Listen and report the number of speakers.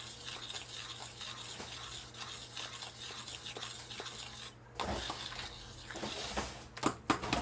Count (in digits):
0